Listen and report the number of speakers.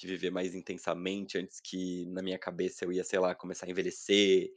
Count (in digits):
1